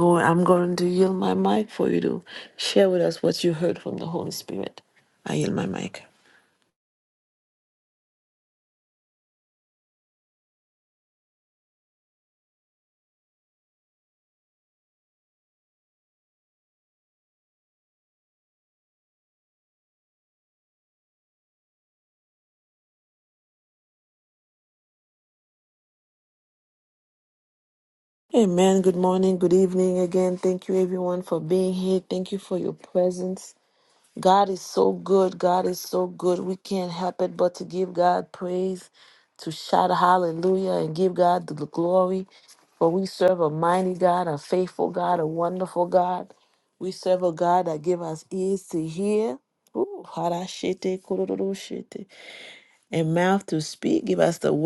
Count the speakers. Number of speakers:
1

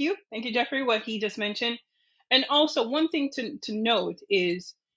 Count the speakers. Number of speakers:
1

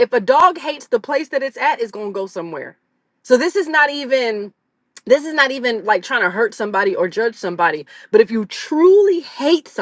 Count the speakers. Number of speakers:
1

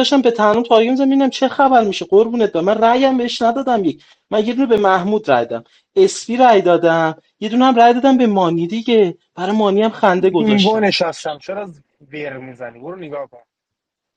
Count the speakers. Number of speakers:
2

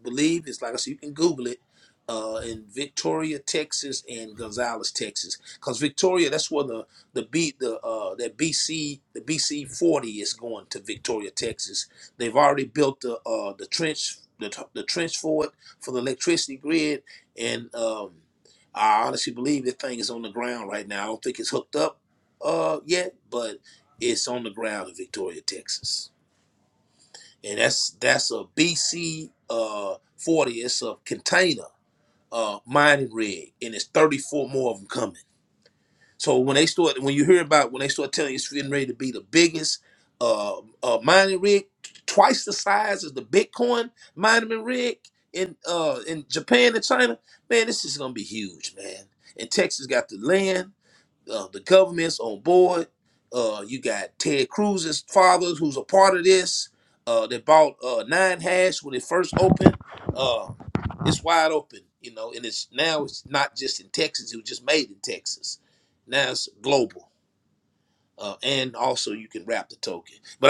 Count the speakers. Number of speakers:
1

